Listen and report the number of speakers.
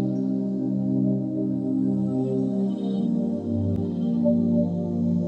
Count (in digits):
0